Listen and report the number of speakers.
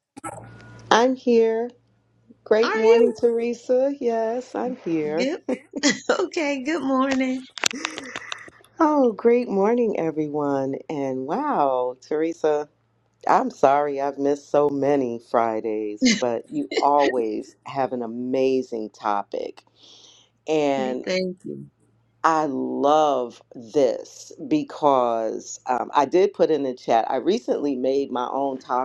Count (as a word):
two